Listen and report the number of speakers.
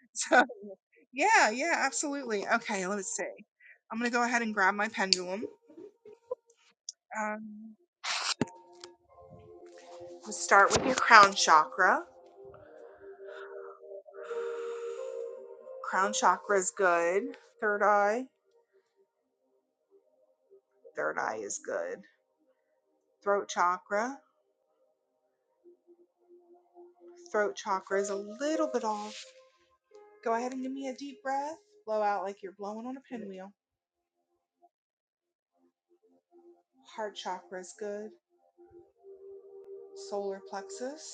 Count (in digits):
1